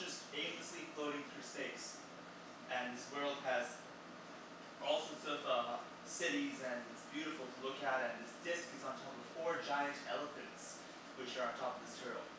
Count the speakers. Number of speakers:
1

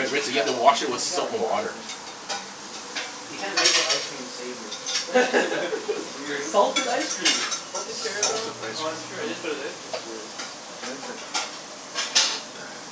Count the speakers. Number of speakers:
4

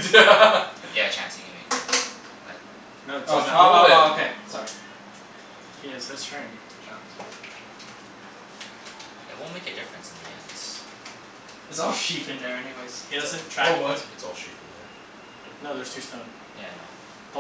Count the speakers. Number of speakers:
4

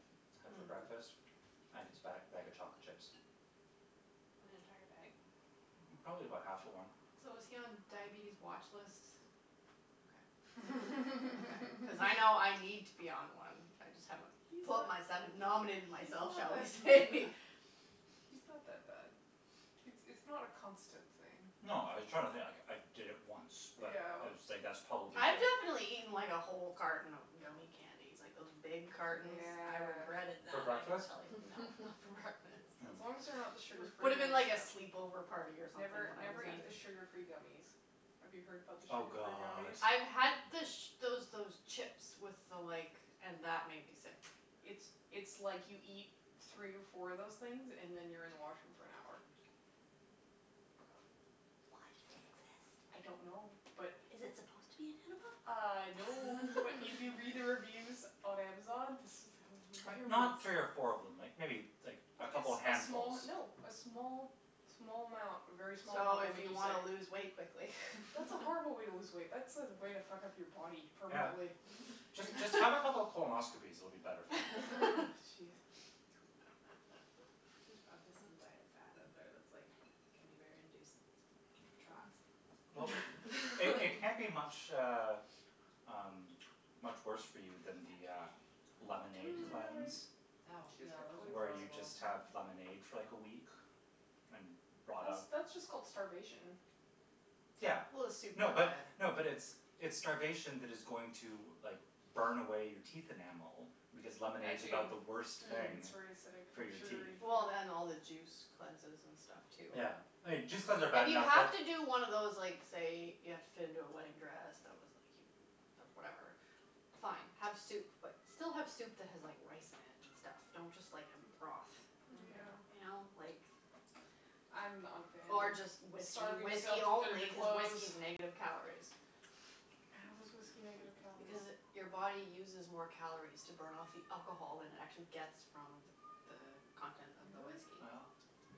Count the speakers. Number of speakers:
4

